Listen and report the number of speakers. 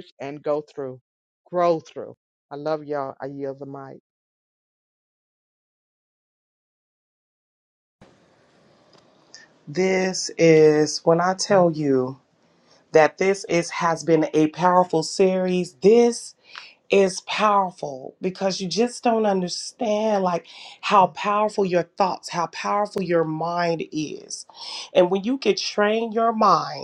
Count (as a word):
two